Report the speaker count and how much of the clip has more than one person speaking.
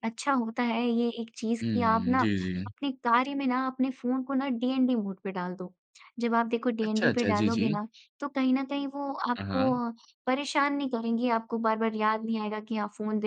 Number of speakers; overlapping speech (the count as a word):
two, about 16%